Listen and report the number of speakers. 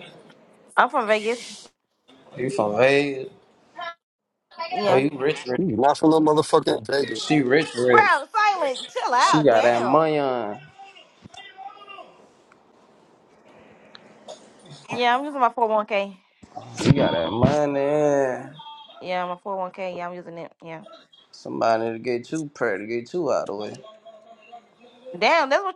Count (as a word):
three